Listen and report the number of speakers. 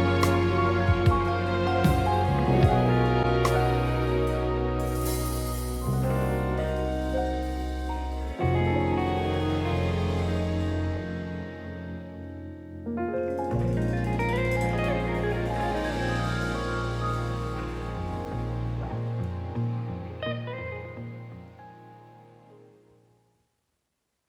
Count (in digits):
0